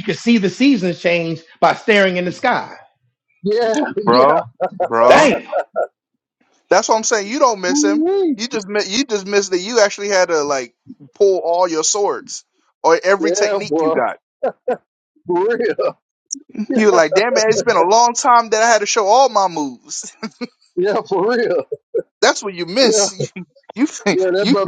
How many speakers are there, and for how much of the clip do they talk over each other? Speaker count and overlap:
three, about 10%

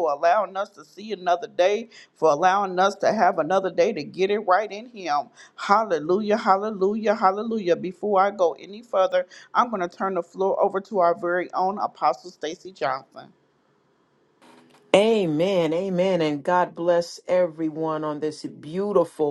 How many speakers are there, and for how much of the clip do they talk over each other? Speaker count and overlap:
two, no overlap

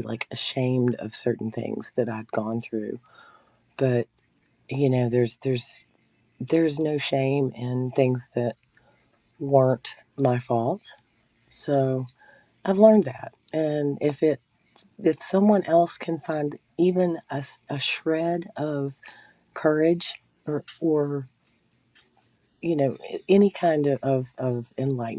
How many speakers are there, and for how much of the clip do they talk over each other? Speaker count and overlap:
one, no overlap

